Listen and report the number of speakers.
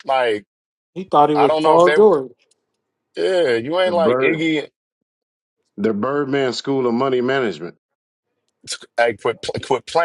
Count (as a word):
three